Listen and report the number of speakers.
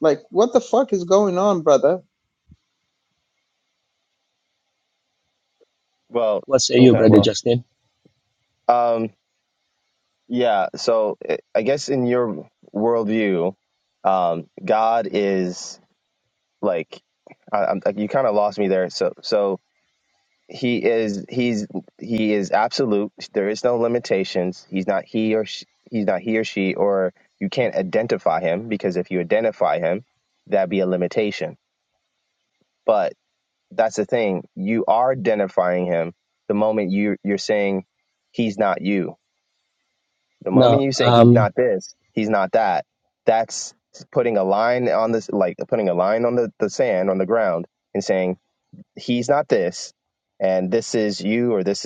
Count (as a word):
three